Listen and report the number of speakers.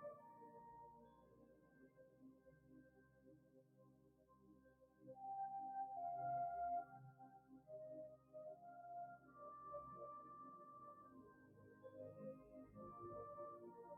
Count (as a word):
zero